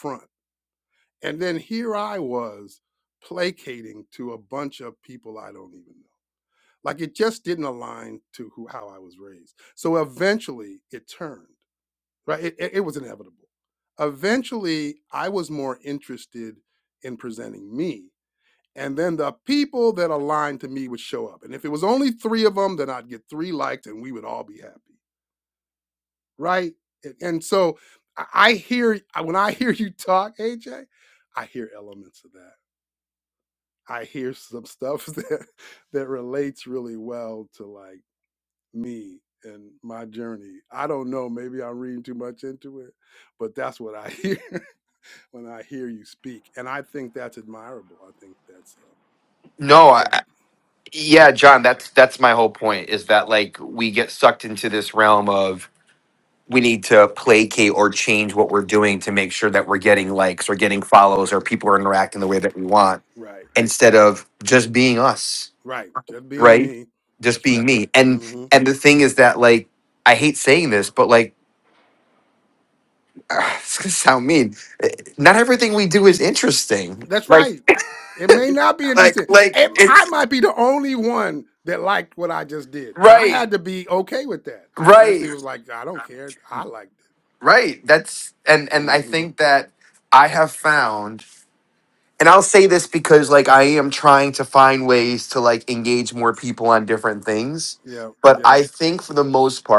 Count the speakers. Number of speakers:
2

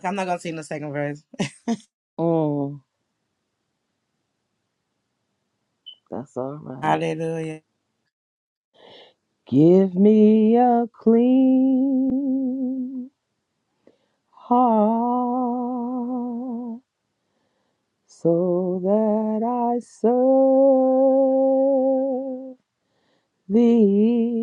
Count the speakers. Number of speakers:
2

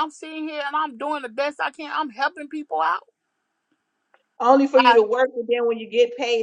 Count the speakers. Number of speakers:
2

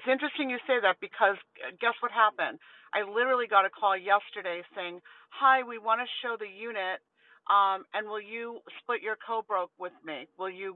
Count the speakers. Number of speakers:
1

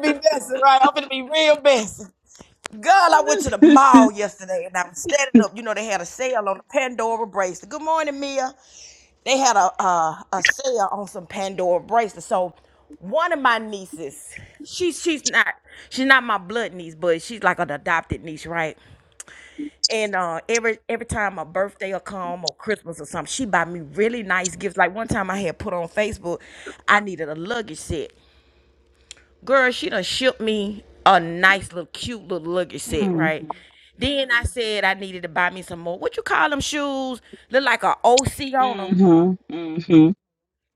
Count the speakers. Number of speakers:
2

